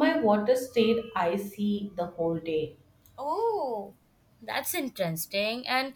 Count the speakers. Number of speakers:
2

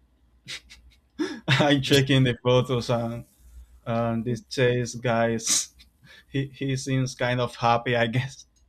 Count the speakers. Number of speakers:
1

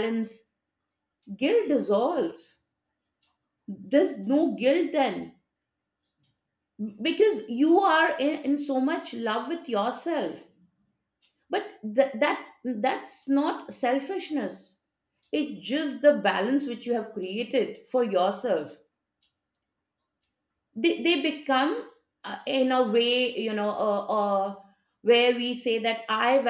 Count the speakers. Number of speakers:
1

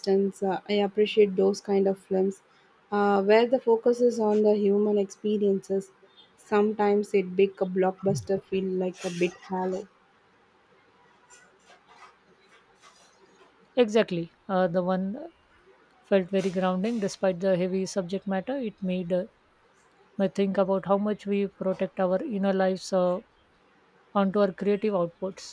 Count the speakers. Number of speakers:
2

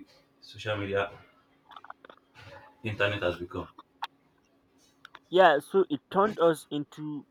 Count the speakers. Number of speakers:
2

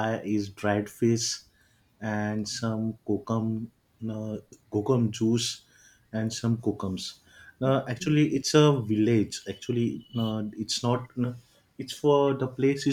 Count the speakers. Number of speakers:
1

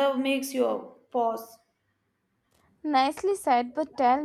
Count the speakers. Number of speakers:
2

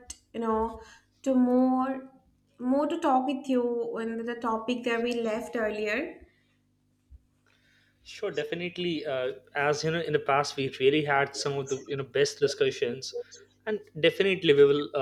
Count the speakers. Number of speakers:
2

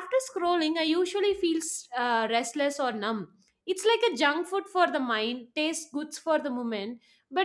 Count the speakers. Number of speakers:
1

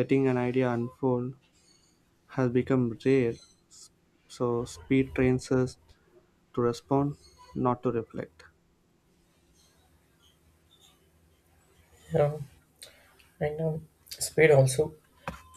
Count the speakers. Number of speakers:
2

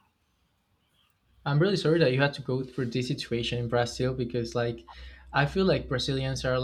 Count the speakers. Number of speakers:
1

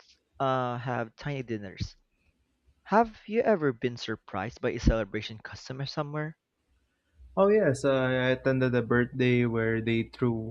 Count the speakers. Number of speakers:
2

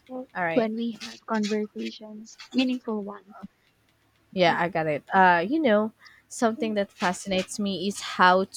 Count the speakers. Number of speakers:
2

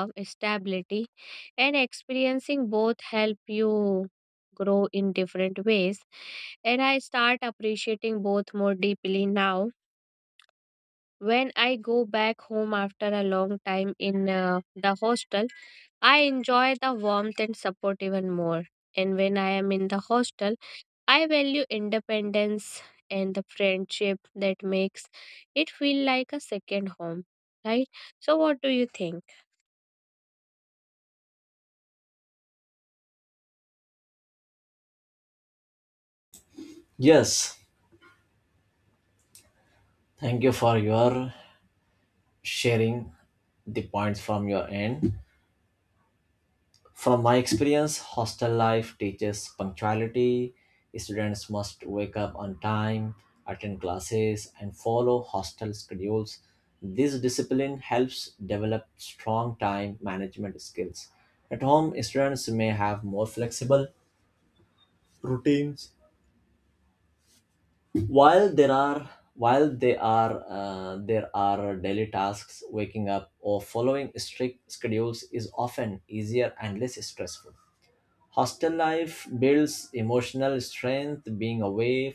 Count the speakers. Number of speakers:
2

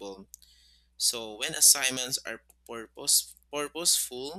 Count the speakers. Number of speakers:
1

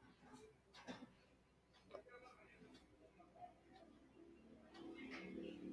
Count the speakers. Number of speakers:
0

